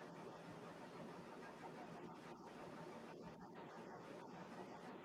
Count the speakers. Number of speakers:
zero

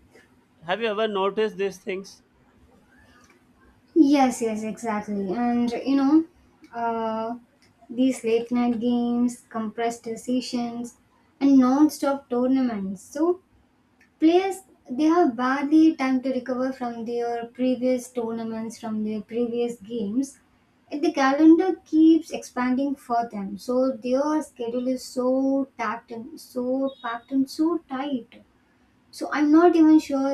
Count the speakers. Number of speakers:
two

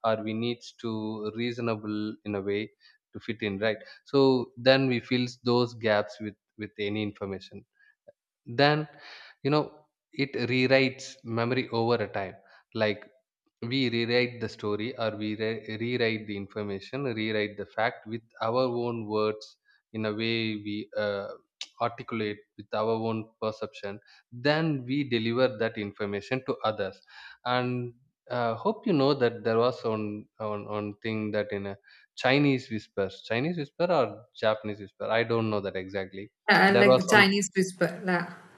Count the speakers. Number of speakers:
two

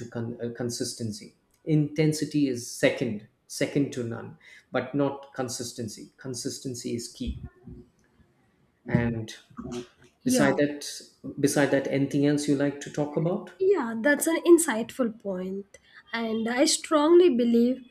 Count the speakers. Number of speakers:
two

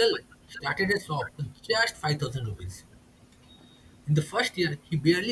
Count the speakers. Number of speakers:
one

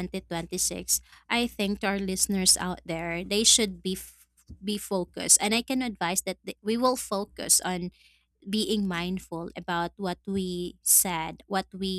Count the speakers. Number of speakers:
one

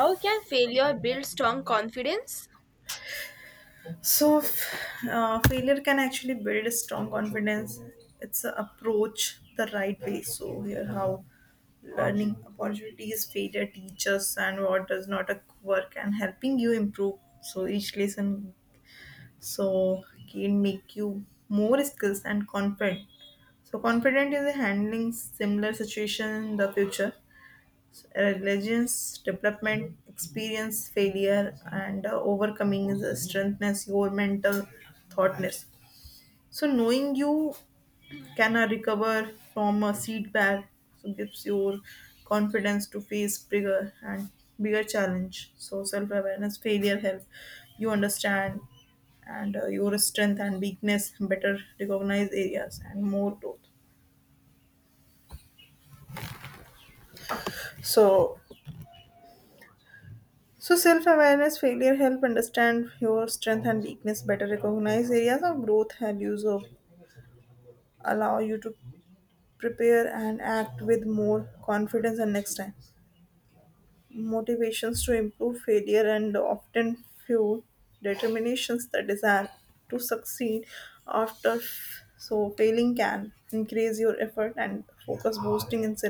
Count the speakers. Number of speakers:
two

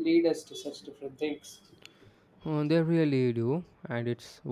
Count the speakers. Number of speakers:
two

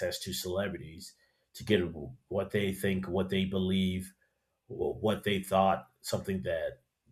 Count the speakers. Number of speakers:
one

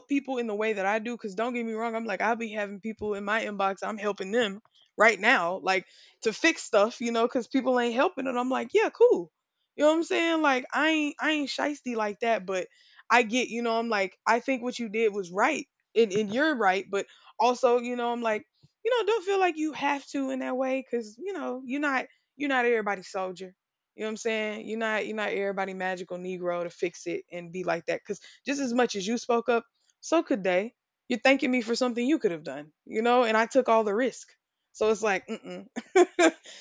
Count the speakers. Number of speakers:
one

